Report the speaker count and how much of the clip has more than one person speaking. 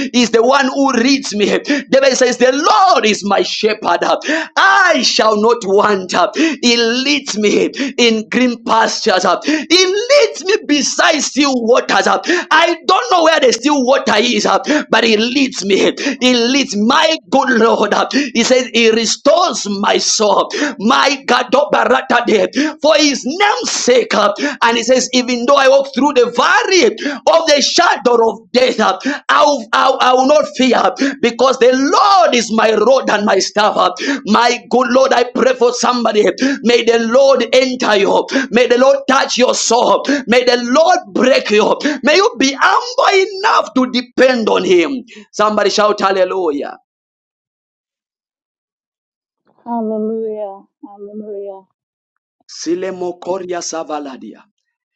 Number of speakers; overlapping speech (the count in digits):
2, no overlap